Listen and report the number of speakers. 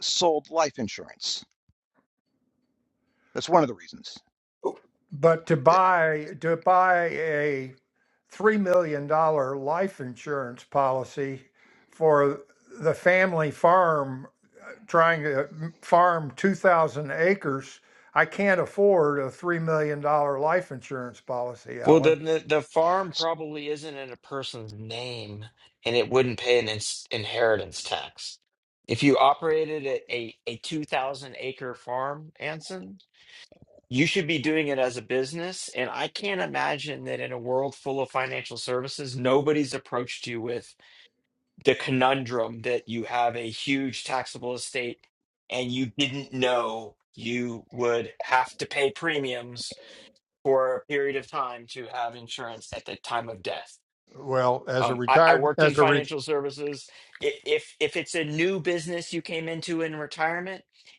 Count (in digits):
3